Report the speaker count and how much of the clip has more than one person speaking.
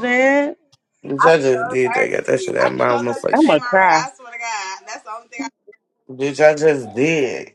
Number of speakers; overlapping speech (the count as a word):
three, about 38%